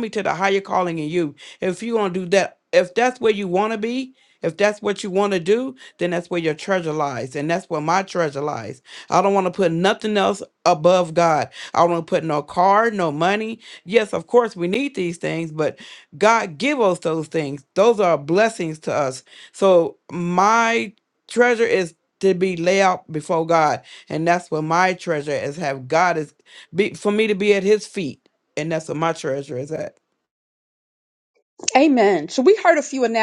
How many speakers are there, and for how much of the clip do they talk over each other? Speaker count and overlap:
2, no overlap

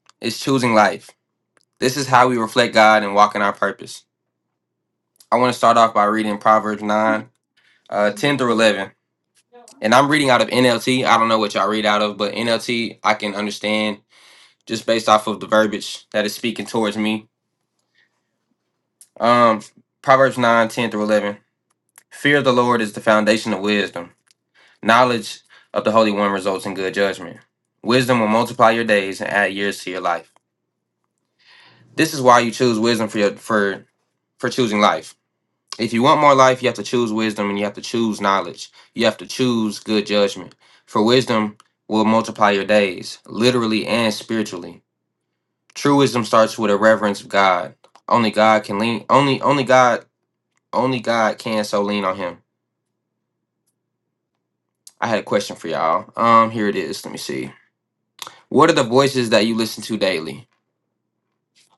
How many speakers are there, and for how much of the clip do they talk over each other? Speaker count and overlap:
1, no overlap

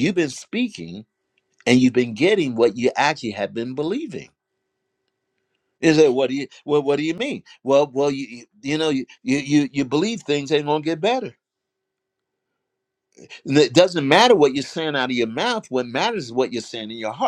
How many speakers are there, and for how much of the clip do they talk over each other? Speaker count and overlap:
1, no overlap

